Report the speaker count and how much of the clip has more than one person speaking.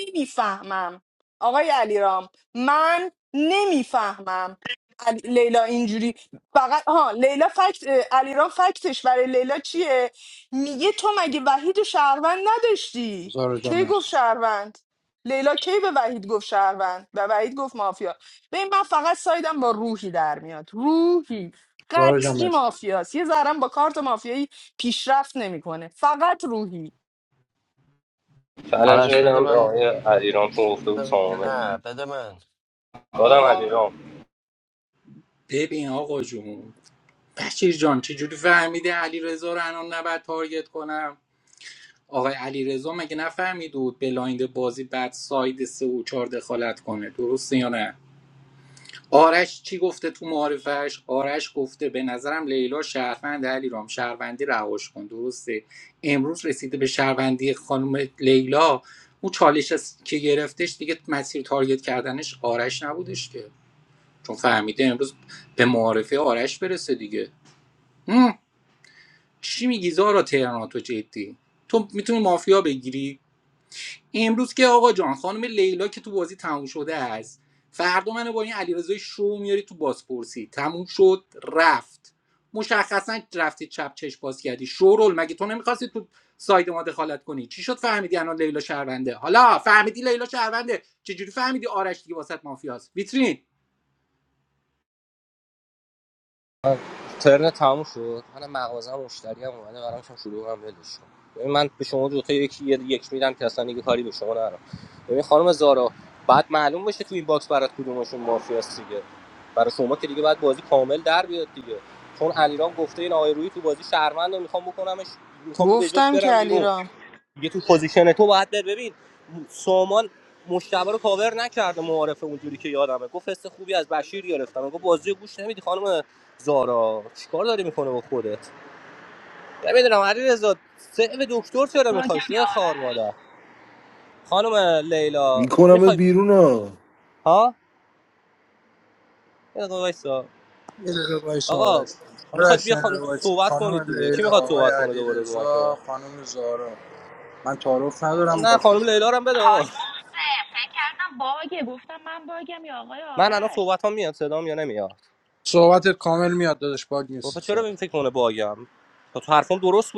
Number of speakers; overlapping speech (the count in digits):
7, about 6%